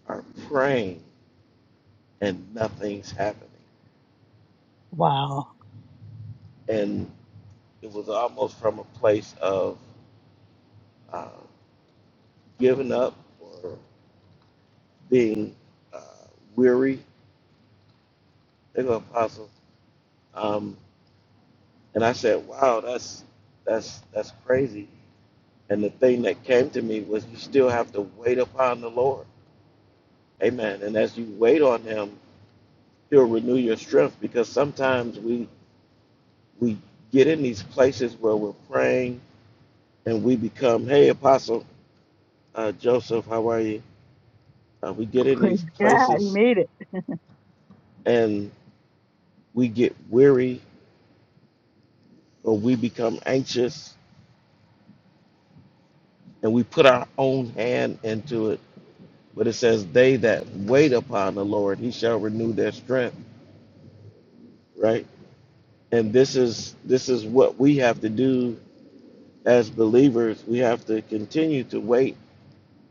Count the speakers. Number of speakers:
two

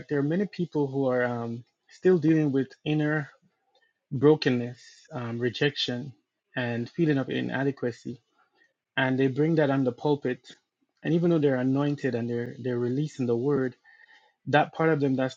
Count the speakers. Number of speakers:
one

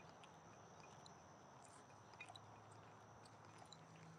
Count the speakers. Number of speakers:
zero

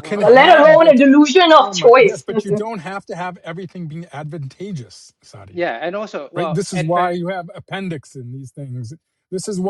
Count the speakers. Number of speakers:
three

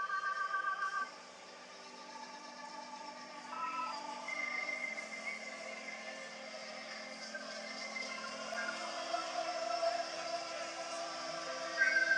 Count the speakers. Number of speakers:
zero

